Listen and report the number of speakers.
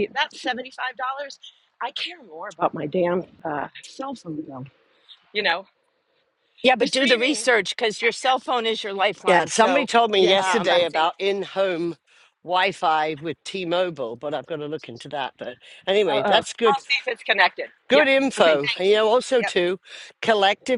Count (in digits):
3